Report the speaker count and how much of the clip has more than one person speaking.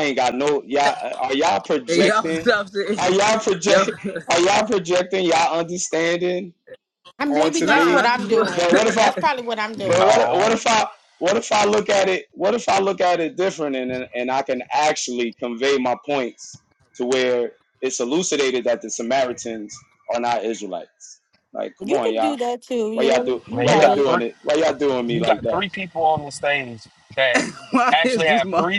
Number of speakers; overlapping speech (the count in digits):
4, about 24%